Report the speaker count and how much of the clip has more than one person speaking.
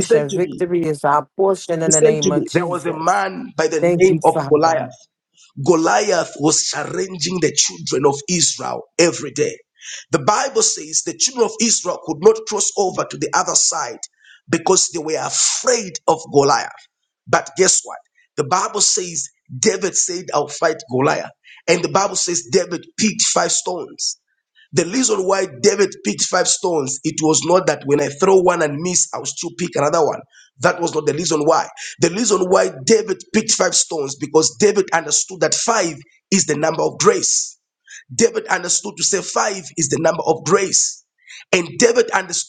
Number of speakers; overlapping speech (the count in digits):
2, about 7%